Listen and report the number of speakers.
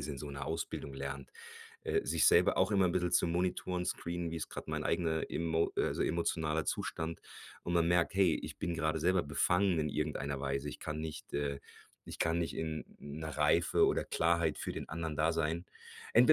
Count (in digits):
1